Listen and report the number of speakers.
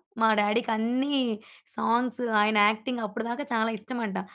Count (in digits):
1